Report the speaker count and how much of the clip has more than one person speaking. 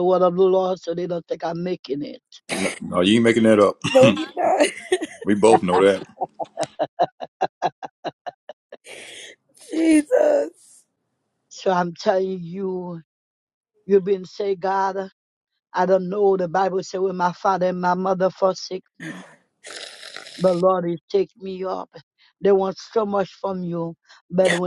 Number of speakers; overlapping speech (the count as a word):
three, no overlap